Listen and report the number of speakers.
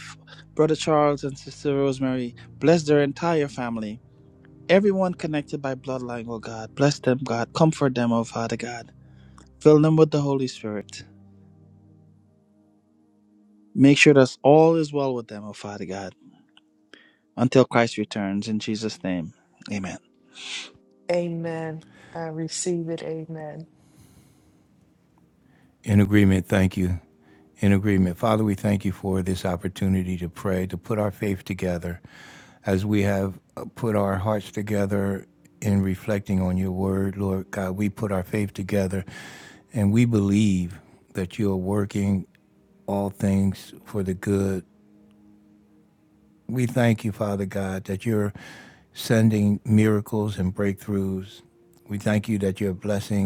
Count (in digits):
3